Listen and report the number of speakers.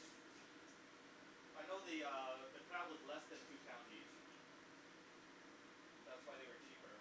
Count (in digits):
1